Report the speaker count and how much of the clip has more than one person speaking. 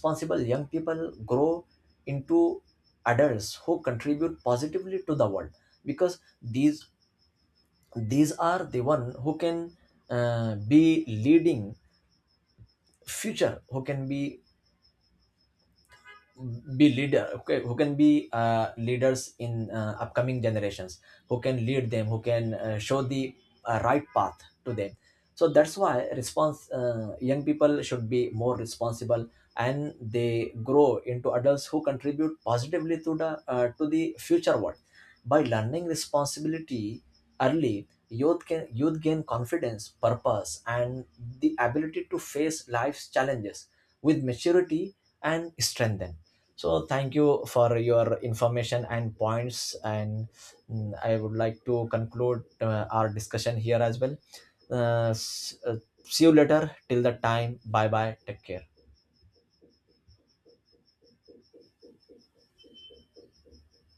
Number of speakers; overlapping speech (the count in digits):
1, no overlap